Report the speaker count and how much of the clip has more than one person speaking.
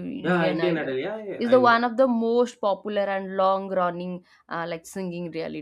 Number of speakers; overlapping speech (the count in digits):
2, about 22%